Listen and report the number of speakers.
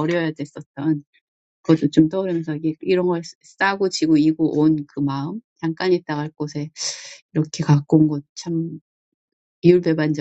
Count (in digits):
1